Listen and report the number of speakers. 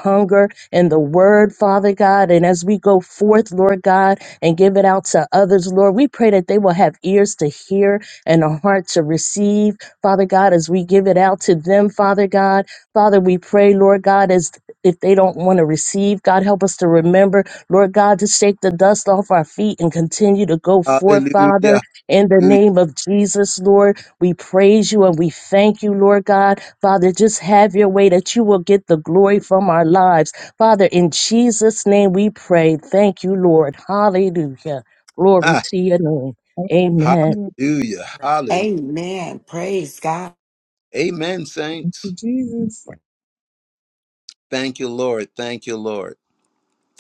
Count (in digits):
4